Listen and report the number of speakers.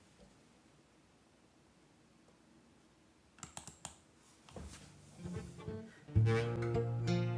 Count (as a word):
zero